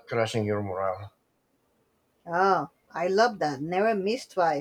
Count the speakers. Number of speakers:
two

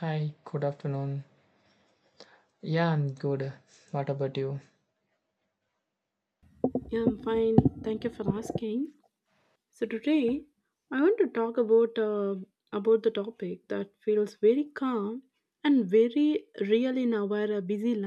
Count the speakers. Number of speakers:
two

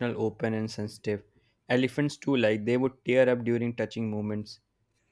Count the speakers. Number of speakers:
one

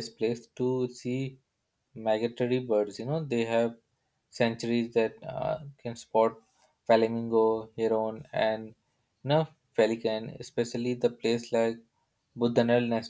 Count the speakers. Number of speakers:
one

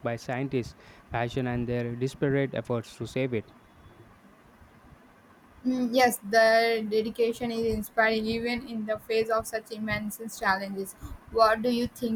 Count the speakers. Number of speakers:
two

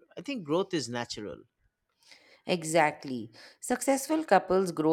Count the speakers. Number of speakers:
two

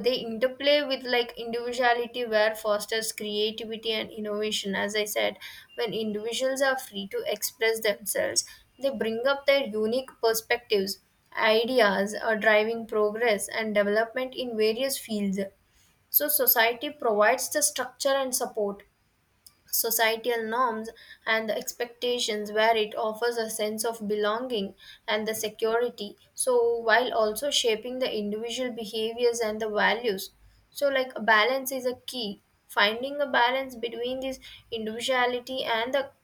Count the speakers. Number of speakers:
one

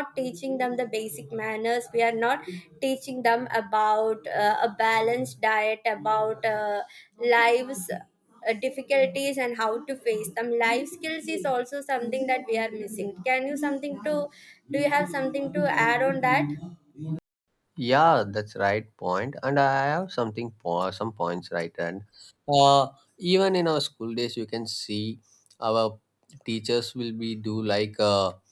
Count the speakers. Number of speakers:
two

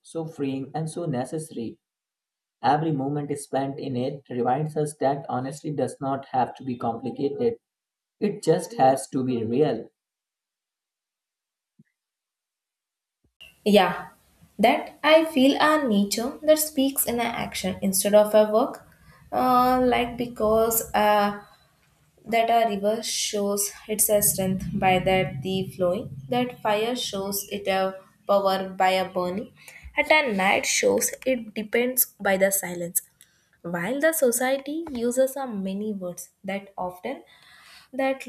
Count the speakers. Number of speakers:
two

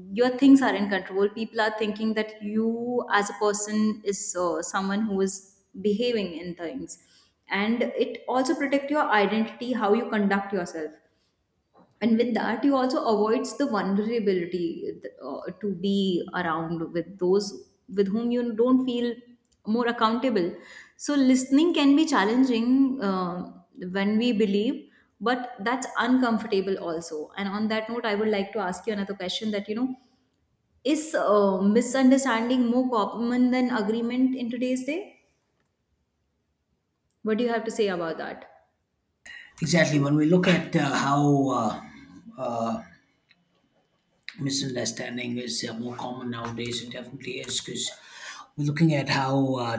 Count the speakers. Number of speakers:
two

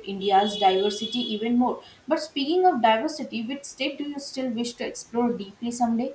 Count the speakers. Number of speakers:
one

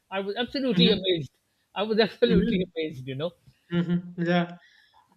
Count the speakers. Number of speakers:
two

